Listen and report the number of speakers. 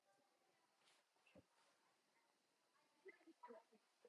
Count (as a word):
zero